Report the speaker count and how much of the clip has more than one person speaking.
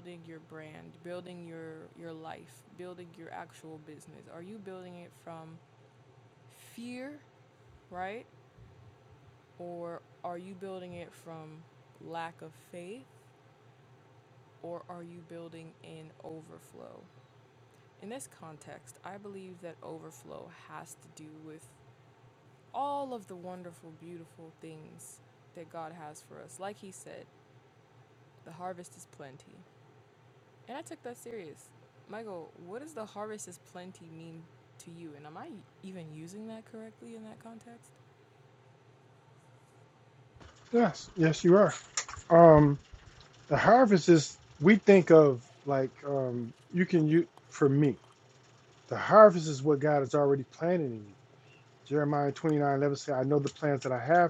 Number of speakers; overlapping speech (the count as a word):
two, no overlap